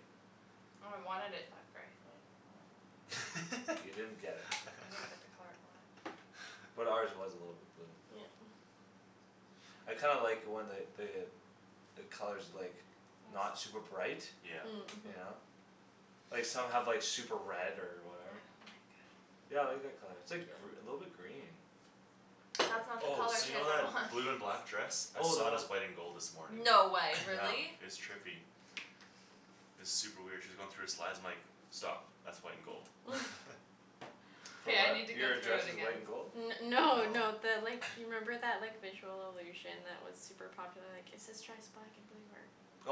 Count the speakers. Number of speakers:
4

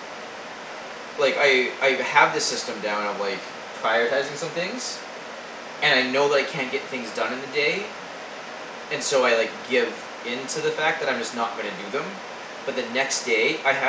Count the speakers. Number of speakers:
1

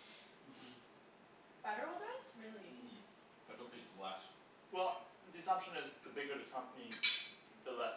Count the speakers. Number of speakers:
3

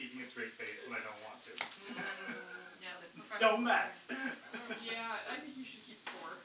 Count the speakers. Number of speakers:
3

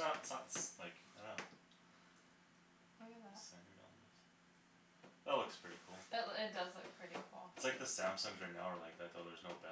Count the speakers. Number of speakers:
2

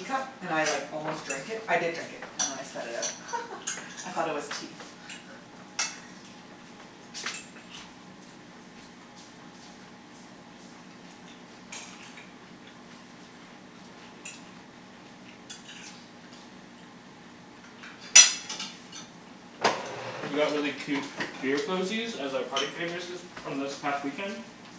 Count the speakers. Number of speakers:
2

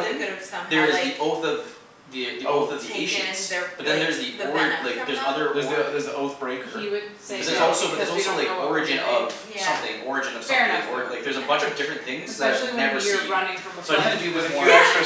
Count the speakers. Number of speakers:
4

